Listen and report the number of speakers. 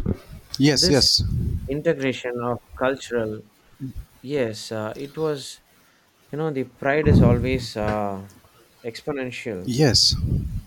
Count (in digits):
2